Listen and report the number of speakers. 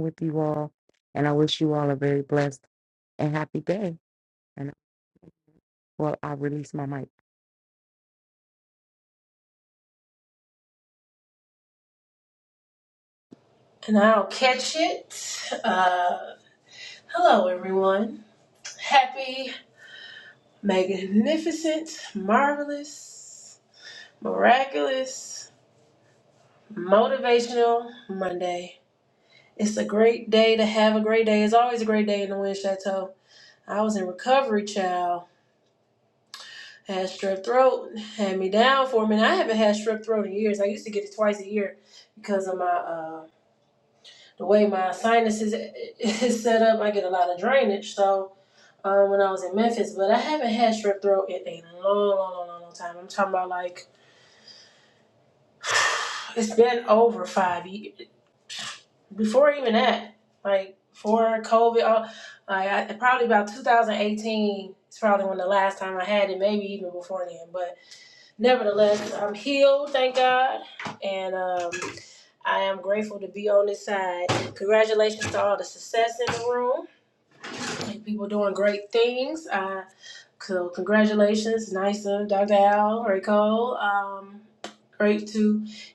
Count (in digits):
2